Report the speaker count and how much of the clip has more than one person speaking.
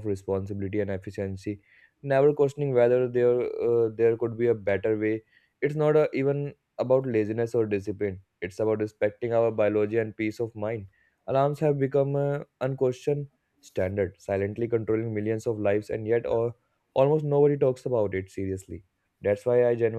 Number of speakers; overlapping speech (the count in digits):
1, no overlap